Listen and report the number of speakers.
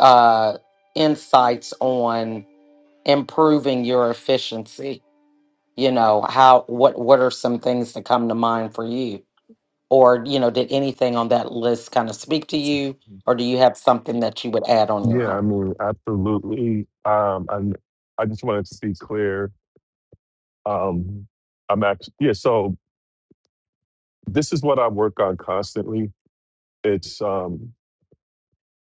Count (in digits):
2